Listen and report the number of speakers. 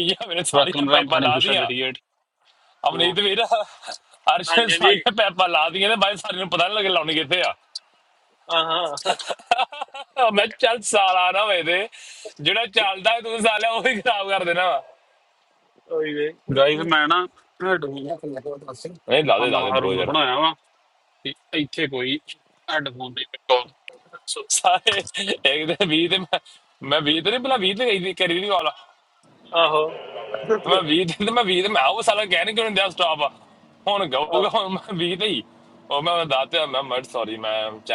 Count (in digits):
3